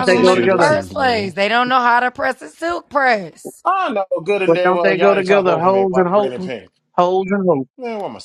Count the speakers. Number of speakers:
3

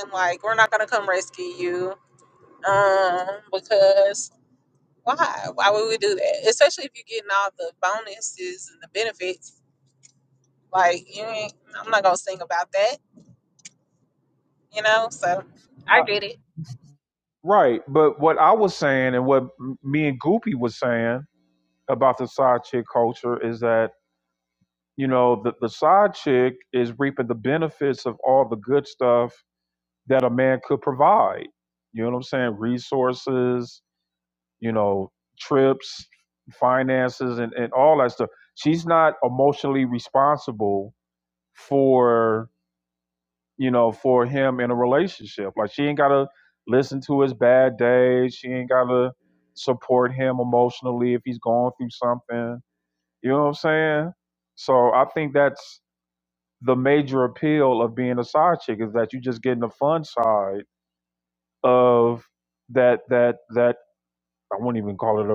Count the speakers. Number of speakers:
2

